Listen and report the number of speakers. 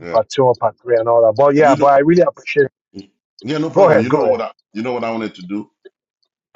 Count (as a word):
two